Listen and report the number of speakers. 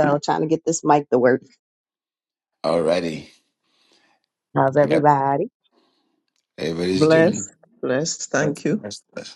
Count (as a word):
three